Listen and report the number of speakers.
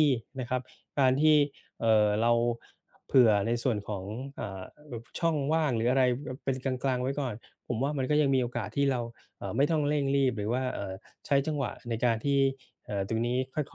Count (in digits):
1